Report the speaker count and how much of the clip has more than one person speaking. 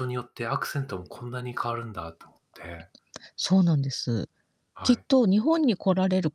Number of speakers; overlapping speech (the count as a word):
two, about 3%